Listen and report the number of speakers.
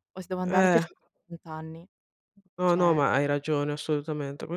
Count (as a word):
two